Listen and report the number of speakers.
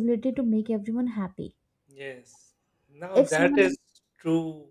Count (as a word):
two